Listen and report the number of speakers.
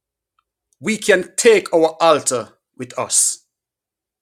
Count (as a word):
one